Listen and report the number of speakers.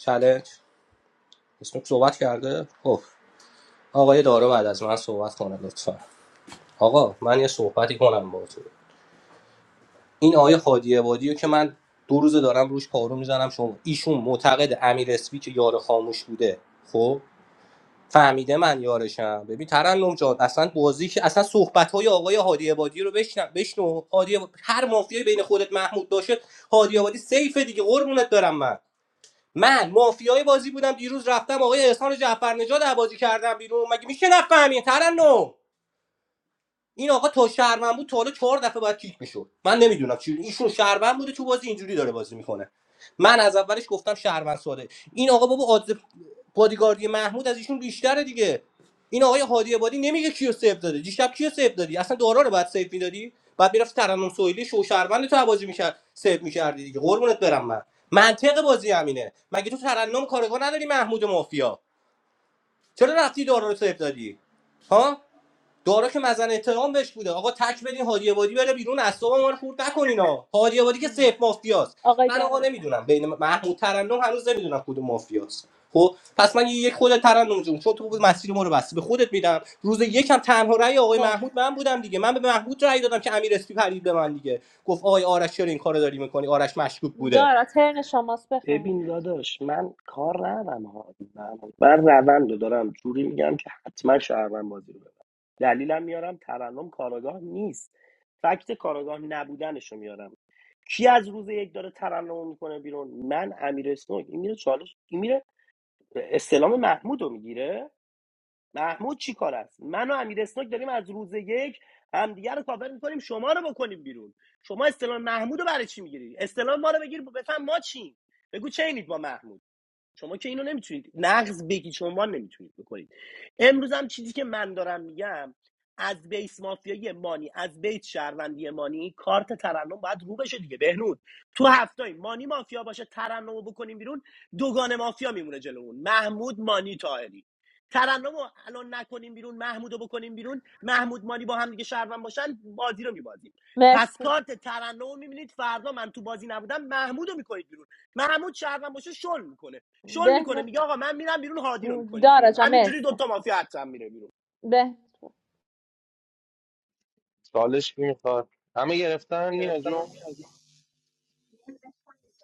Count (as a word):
four